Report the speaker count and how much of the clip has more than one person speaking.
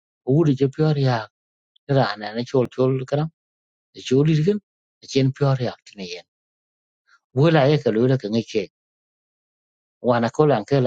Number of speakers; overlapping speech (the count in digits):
1, no overlap